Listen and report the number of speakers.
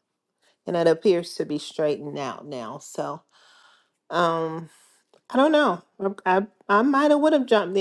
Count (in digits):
1